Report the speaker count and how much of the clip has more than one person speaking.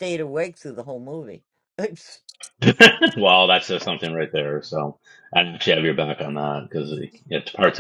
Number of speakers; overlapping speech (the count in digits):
2, no overlap